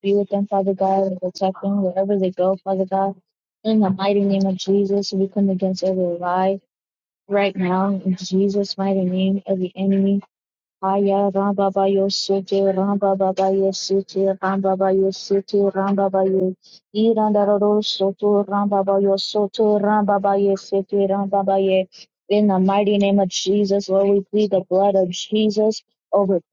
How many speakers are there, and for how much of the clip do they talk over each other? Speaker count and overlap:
1, no overlap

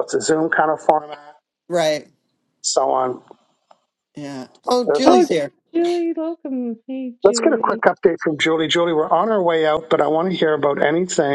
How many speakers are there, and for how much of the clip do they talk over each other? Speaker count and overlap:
3, about 9%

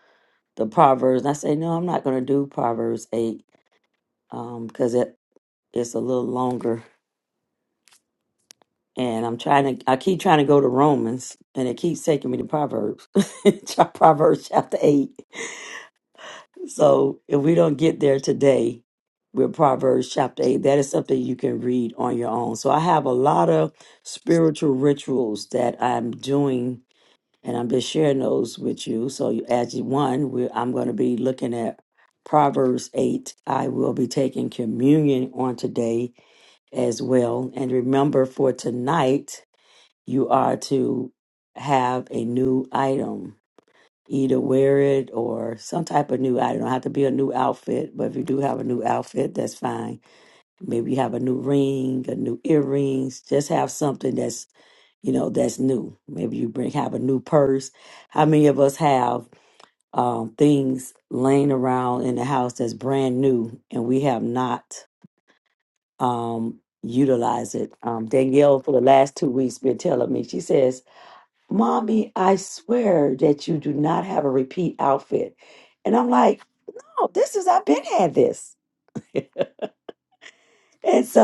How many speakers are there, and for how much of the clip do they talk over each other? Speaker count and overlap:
1, no overlap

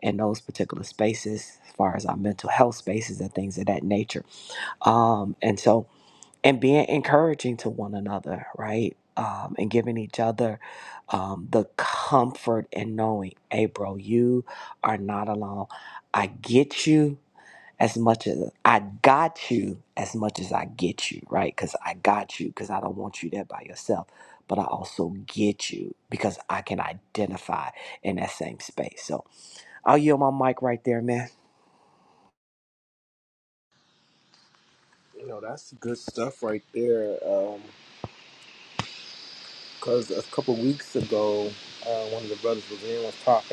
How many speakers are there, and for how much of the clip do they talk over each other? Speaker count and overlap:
2, no overlap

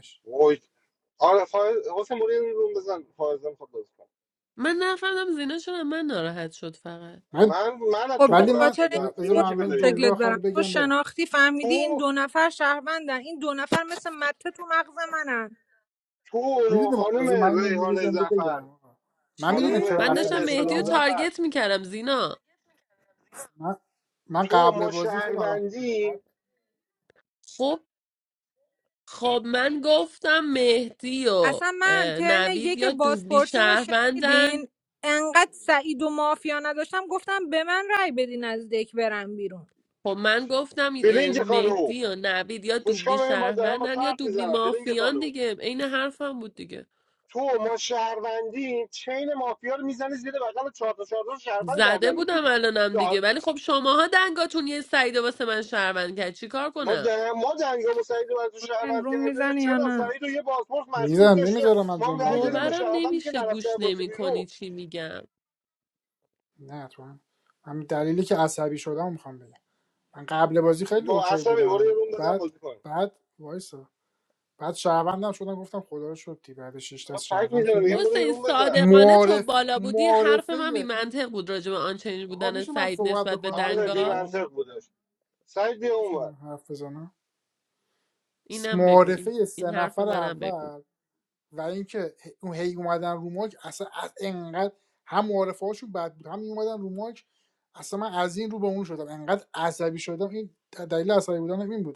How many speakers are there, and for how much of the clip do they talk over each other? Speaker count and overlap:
4, about 29%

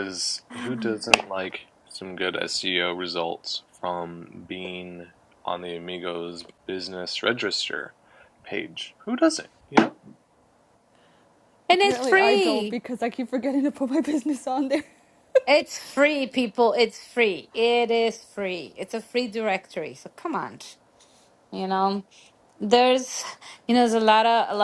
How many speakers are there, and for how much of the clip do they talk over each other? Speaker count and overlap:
3, about 4%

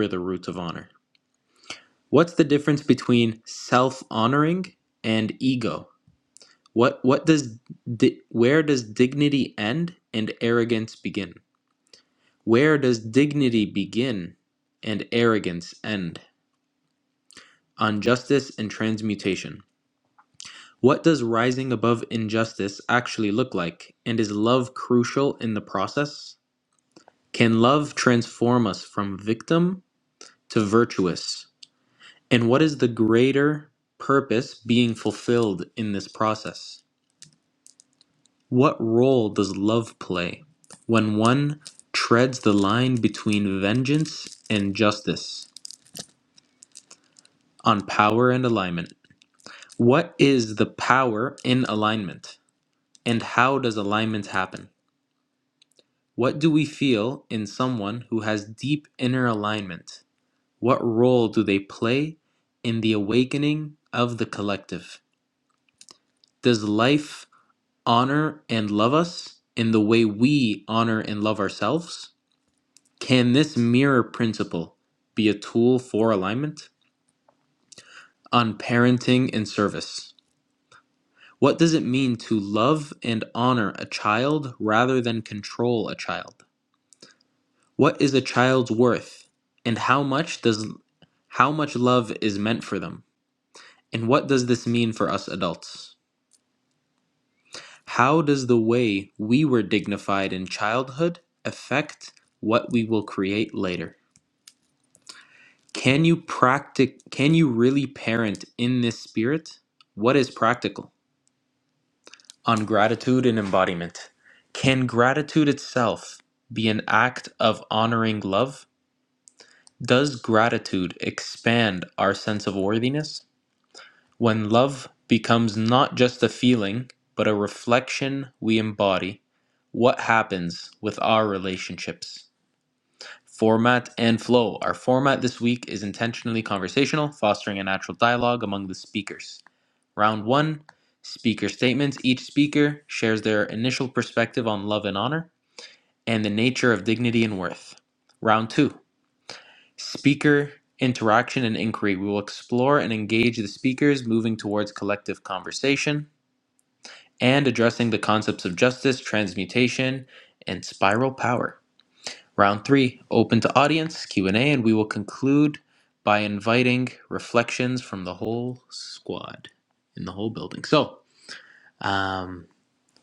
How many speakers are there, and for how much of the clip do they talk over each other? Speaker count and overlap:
1, no overlap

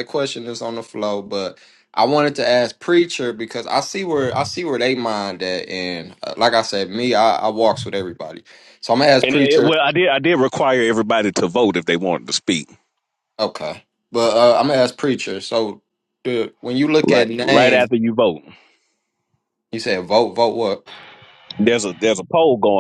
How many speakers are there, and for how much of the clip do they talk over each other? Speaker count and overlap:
2, about 6%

